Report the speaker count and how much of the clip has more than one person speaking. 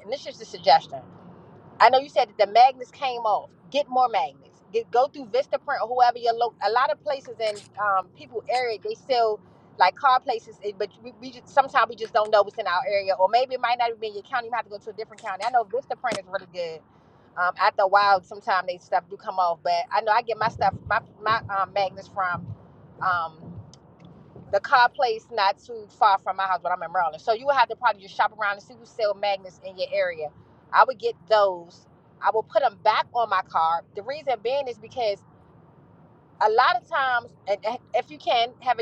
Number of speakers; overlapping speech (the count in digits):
1, no overlap